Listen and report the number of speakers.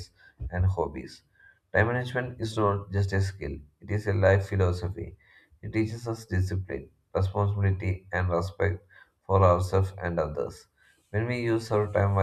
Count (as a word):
one